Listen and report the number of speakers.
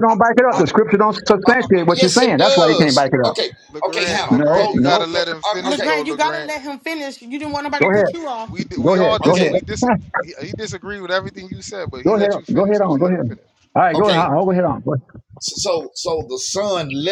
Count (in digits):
4